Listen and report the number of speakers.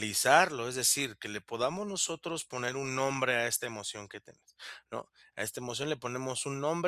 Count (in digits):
1